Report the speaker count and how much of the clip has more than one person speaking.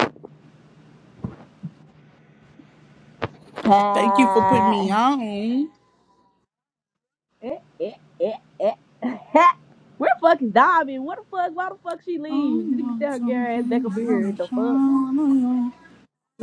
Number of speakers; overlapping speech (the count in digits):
2, about 19%